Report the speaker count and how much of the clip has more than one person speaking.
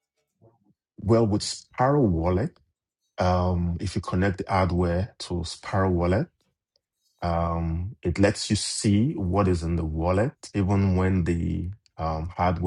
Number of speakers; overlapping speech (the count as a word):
one, no overlap